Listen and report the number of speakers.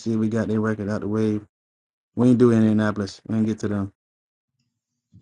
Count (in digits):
1